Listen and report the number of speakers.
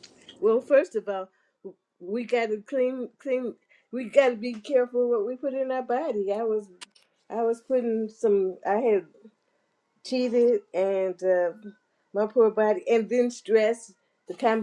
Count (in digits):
1